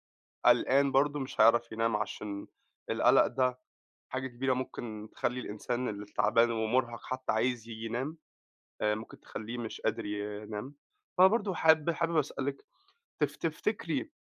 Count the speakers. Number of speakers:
one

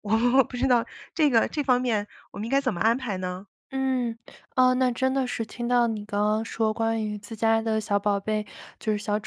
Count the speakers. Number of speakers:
two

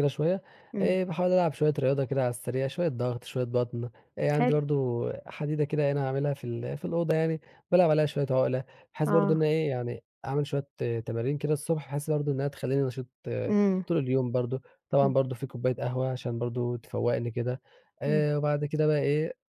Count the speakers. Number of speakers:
two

